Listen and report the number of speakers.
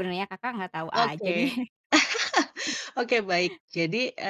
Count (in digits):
2